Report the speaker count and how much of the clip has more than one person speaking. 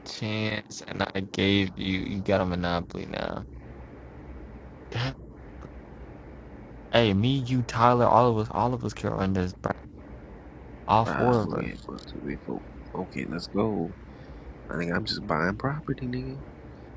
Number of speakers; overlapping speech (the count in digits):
2, about 4%